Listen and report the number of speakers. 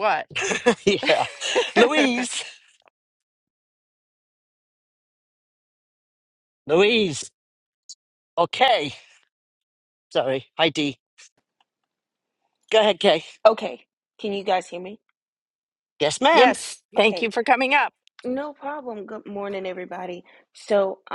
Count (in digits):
3